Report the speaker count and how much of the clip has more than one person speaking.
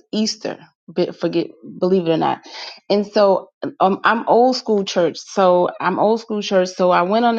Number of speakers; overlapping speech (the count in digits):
1, no overlap